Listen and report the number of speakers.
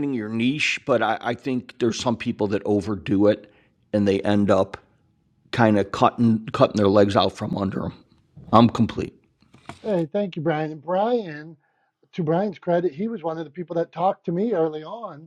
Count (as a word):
two